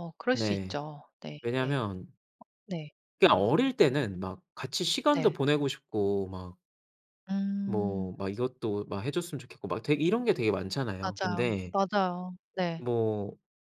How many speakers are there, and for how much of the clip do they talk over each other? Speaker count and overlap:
two, about 13%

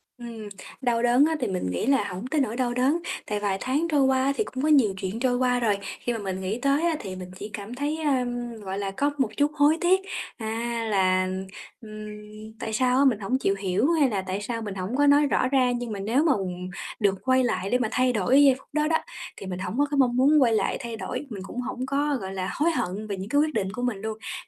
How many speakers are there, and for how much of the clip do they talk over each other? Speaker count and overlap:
one, no overlap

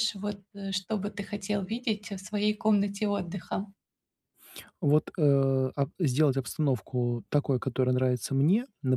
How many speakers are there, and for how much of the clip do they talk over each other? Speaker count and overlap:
two, no overlap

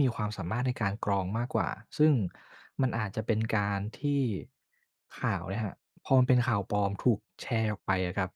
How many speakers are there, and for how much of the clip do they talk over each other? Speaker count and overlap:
one, no overlap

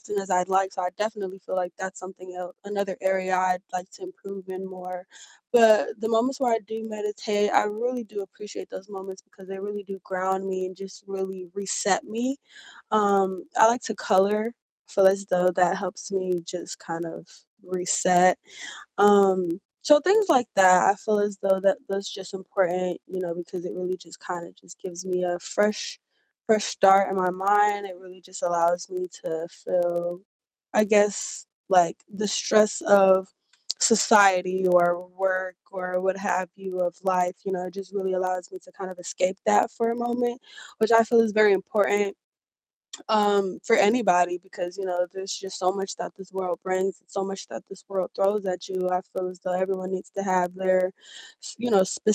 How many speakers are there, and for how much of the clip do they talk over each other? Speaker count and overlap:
one, no overlap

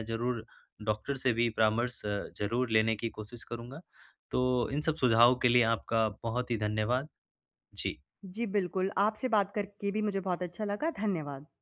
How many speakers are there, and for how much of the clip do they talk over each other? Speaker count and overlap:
two, no overlap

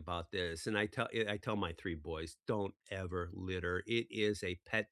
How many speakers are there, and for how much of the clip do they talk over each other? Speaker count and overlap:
one, no overlap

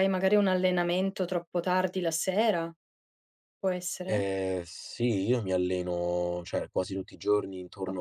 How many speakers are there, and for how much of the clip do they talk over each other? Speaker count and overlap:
two, about 4%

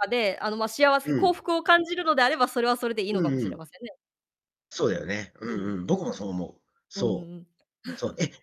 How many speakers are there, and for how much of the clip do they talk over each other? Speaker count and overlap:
two, about 15%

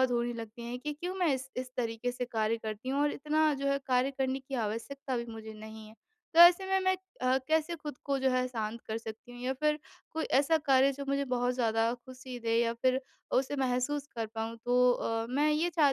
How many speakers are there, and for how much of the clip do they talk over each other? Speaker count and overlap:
one, no overlap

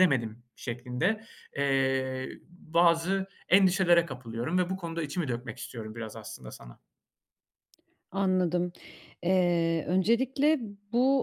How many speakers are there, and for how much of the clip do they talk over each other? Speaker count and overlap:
two, no overlap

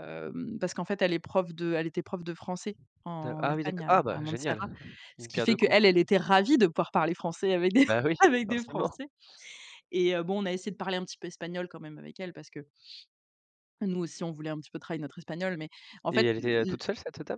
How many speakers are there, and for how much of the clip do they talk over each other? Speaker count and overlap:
two, about 22%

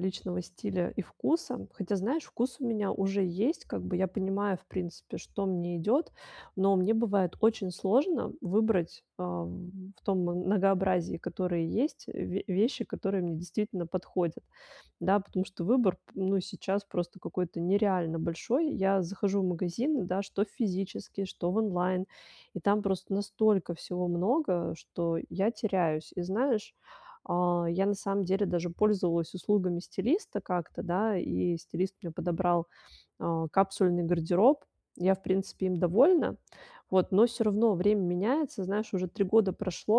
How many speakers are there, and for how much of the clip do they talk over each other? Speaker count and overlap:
one, no overlap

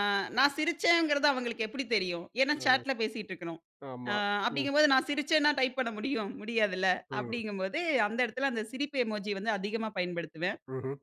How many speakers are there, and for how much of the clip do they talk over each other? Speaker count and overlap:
two, about 9%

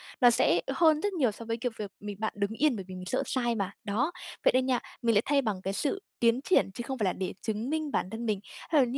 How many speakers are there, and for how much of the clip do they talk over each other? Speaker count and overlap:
one, no overlap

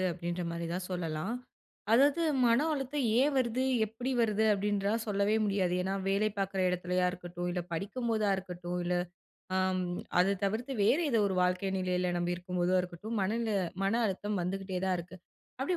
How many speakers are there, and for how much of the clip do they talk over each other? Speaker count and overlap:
one, no overlap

